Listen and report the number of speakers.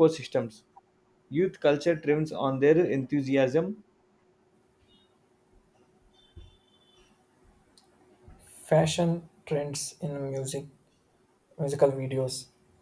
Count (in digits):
2